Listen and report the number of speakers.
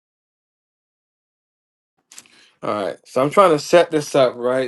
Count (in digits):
1